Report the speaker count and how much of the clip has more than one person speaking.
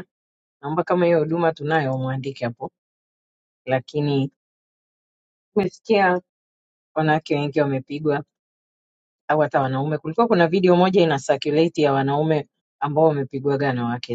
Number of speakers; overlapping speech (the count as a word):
one, no overlap